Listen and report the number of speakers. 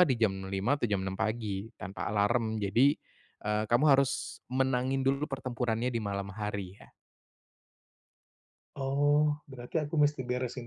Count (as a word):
two